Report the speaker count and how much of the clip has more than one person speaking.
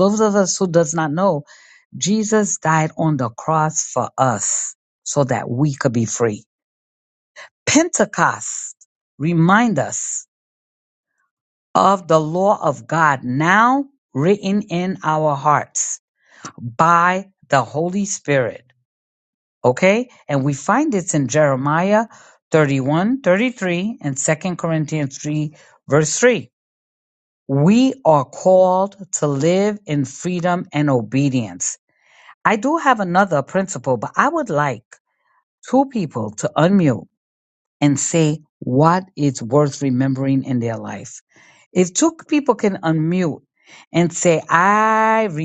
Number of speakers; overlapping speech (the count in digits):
1, no overlap